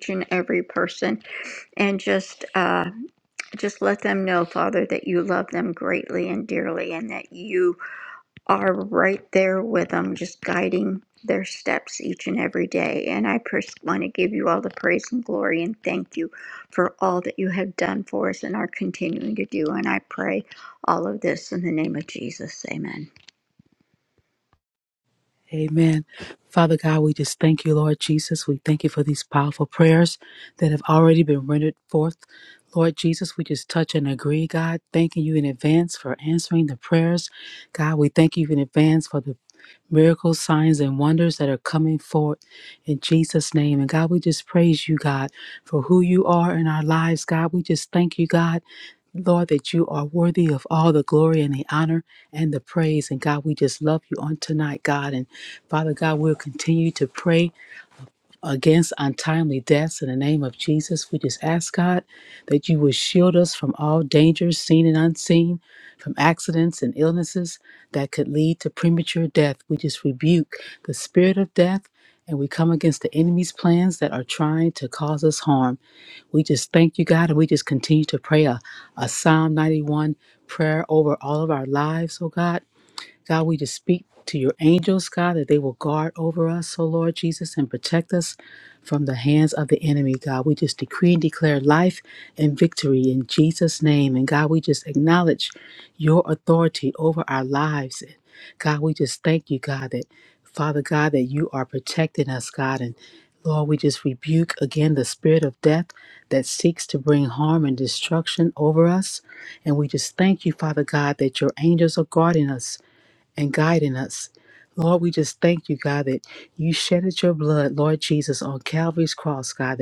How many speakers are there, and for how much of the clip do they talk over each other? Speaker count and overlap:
two, no overlap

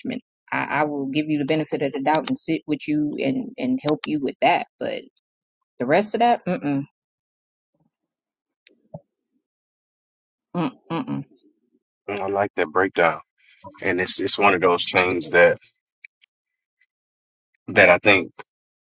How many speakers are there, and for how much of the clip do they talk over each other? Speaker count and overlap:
two, no overlap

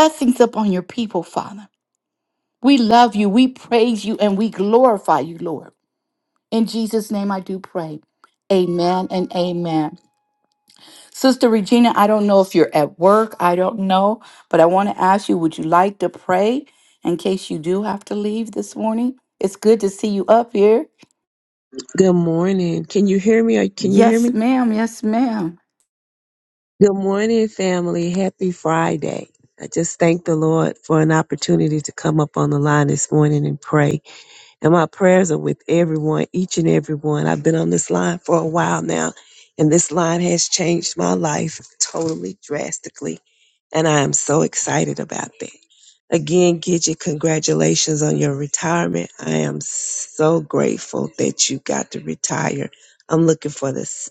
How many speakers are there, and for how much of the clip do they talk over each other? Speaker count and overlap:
two, about 1%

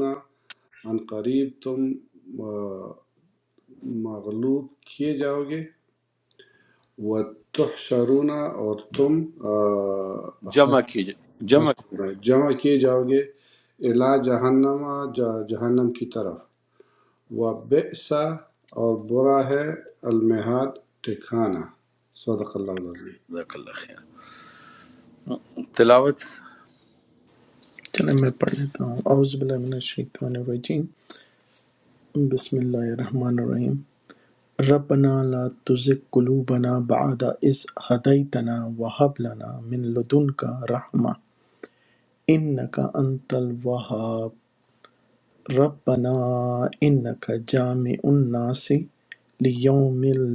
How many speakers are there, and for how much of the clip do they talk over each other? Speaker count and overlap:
three, about 1%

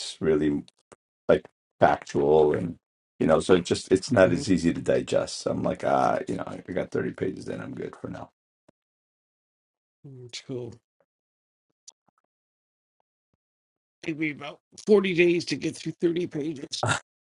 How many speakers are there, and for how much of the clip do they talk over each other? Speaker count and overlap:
two, about 2%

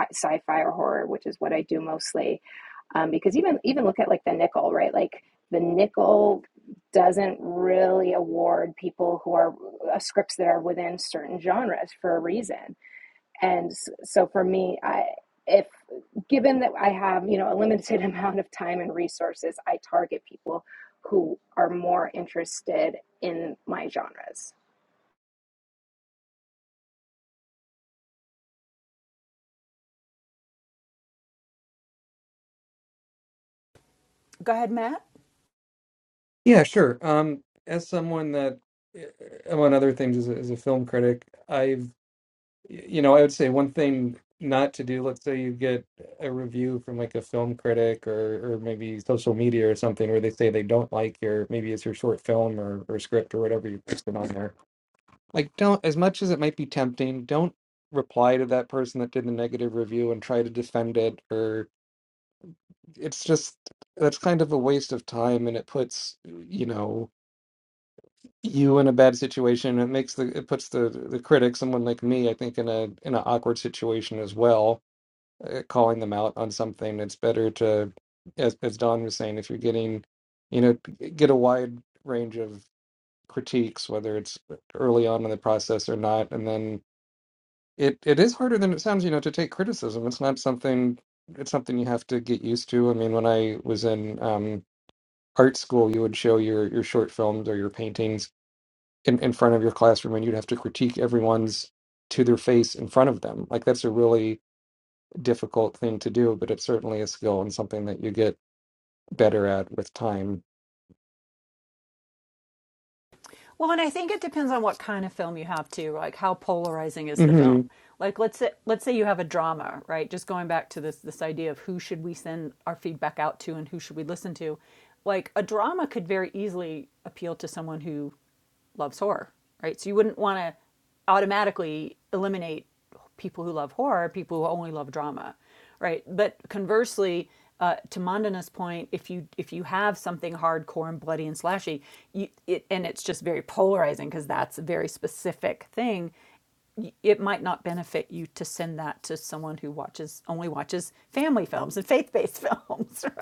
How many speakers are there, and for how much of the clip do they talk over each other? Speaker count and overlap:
three, under 1%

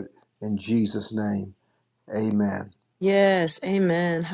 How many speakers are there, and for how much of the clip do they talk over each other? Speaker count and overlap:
two, no overlap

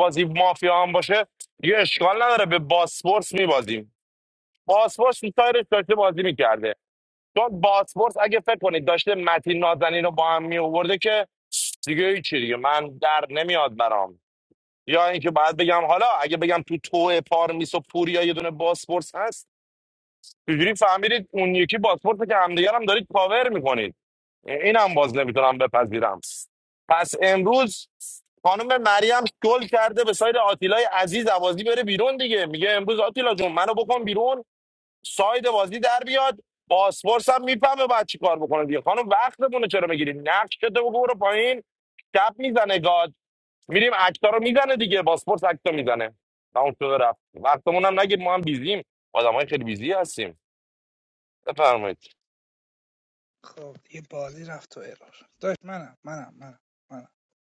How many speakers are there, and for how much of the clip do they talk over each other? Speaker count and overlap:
two, no overlap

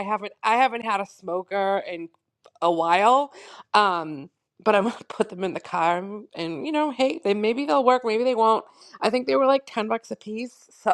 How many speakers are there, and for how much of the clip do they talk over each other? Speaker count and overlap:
one, no overlap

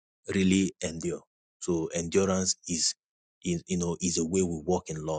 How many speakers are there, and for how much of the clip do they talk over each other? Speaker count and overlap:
one, no overlap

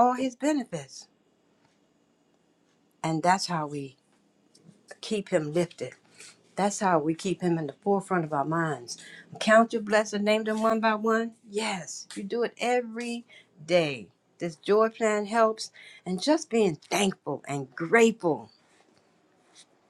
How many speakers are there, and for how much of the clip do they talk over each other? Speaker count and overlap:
one, no overlap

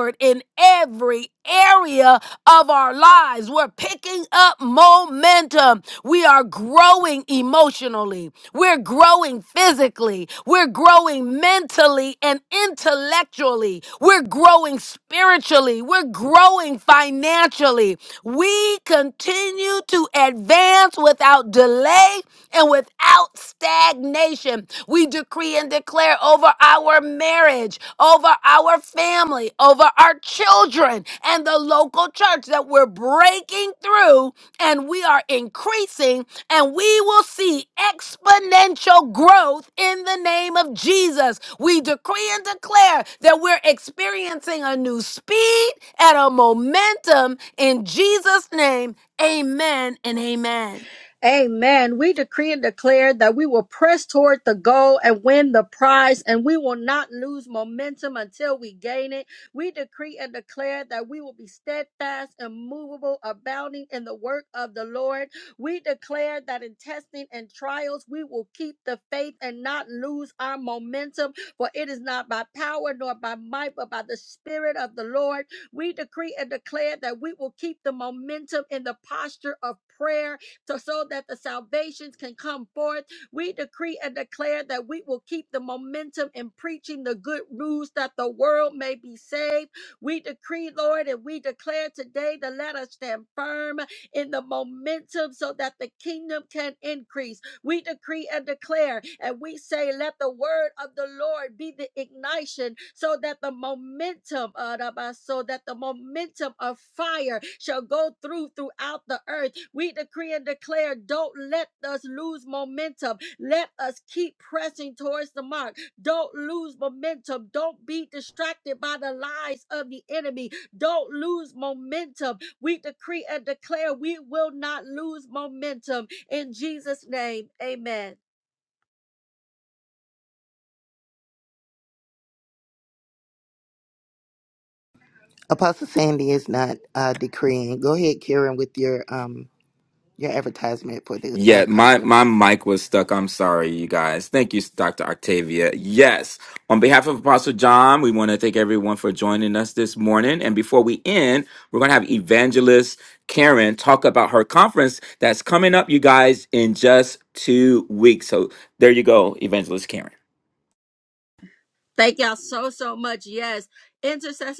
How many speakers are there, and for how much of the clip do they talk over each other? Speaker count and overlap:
four, under 1%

